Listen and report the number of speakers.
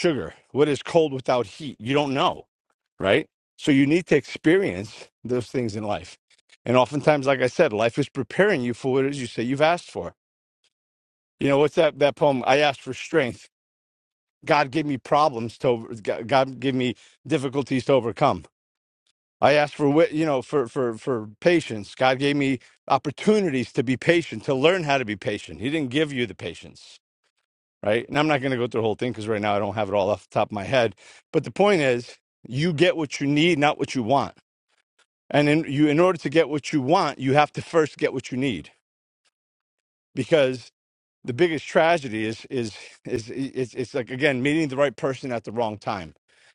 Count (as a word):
one